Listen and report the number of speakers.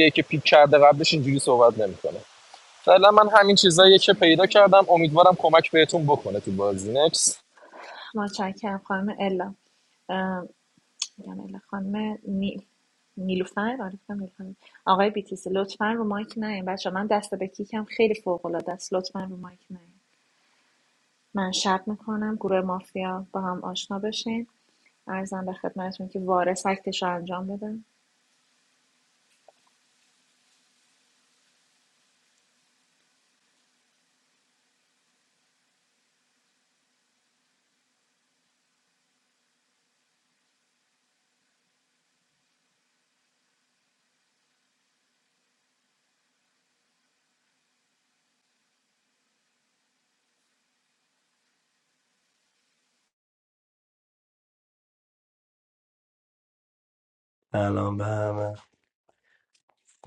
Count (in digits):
3